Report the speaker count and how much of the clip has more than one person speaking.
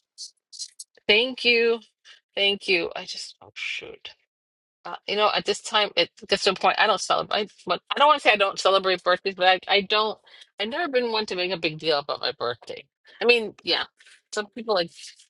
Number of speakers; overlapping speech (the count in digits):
1, no overlap